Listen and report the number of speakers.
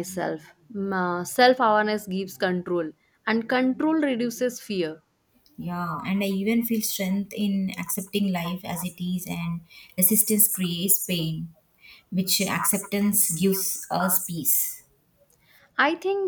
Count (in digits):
2